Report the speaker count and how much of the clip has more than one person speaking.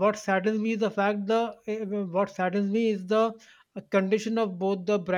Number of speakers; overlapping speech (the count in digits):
1, no overlap